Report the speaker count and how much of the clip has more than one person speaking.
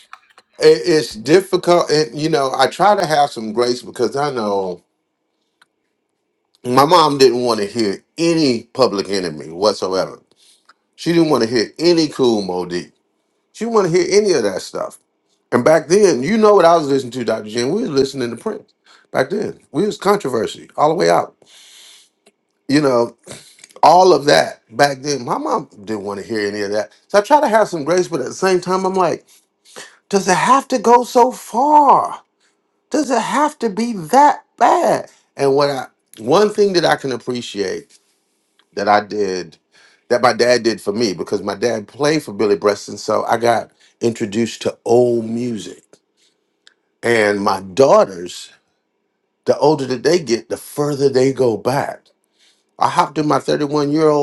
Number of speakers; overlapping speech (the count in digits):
1, no overlap